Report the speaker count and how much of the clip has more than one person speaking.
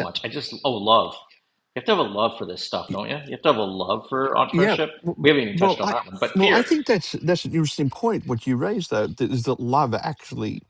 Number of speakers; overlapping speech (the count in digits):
2, about 18%